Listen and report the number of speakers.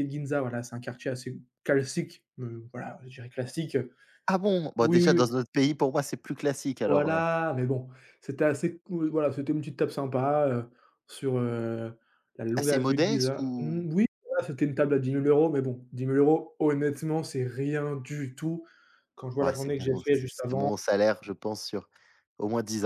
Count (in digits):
2